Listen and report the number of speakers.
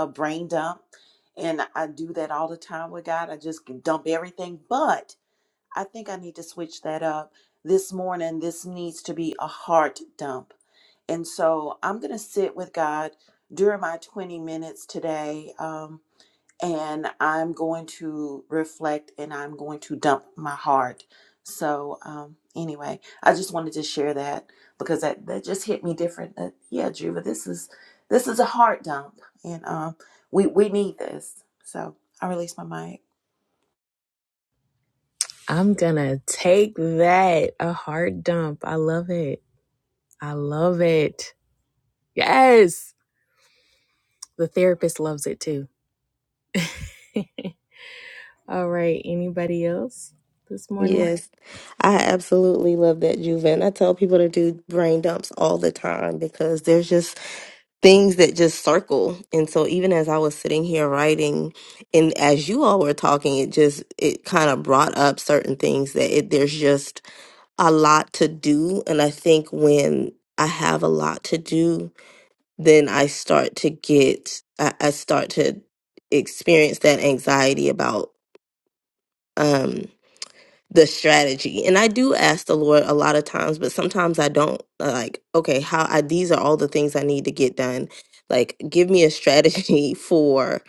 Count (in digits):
3